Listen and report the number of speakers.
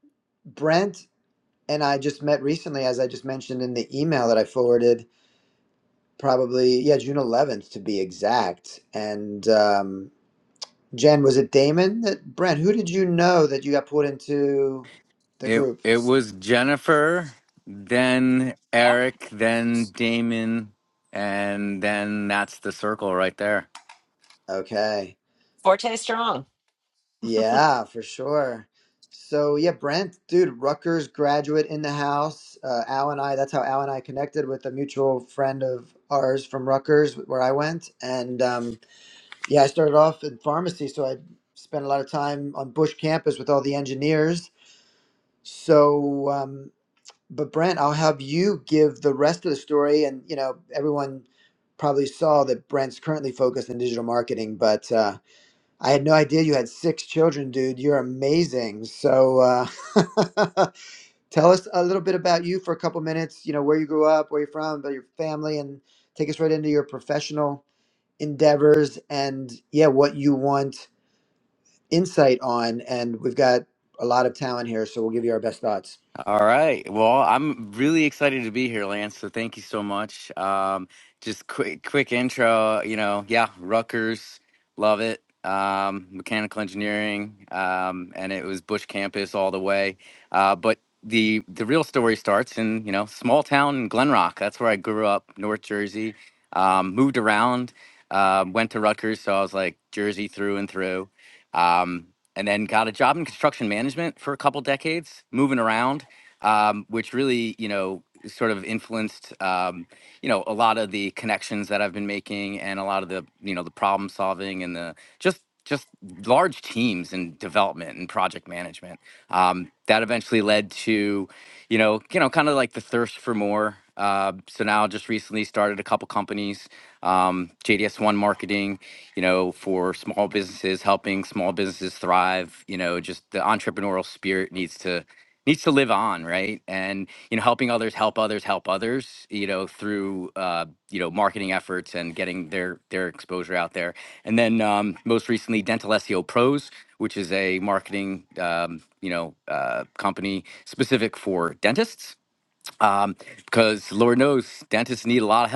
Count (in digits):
3